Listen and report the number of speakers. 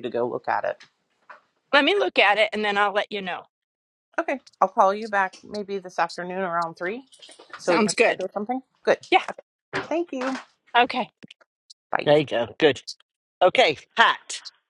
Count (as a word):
three